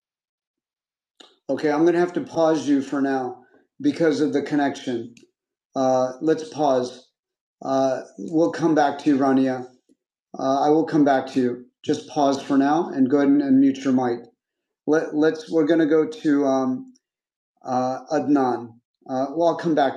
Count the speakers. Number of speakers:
1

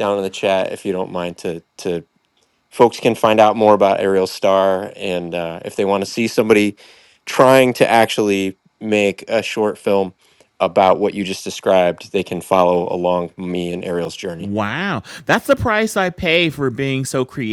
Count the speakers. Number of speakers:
2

